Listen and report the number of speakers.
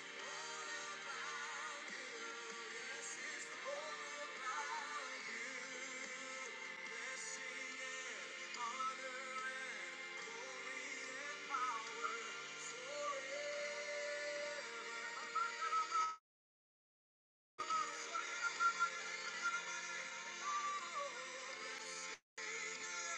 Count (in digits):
0